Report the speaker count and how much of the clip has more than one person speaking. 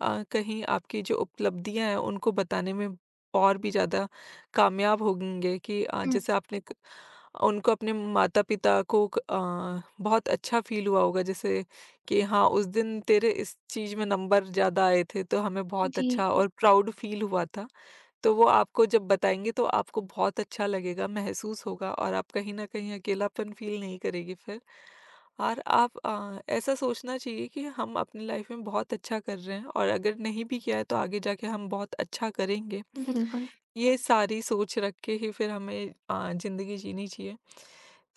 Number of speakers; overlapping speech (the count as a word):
two, about 2%